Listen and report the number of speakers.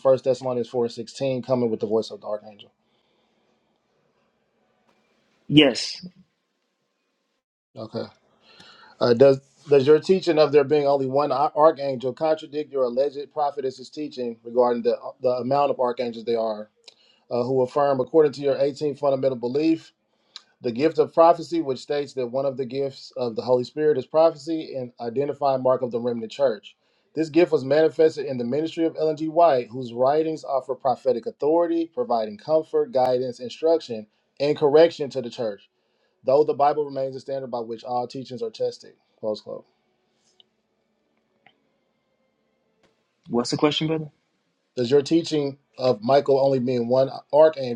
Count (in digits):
2